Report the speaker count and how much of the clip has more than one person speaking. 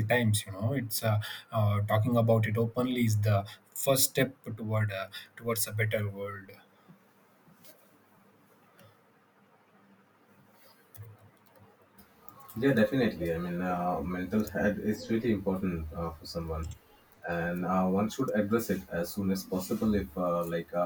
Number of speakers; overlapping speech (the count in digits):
2, no overlap